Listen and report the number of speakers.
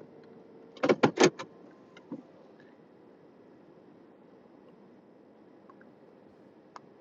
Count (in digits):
0